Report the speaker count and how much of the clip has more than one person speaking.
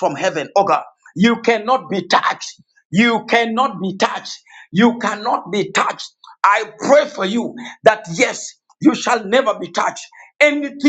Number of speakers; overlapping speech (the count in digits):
1, no overlap